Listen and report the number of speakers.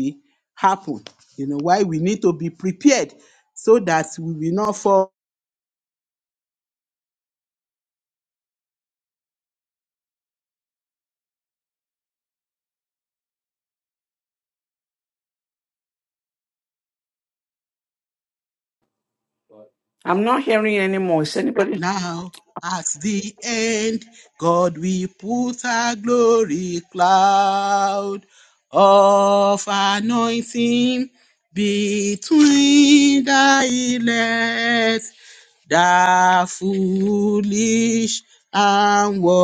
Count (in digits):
2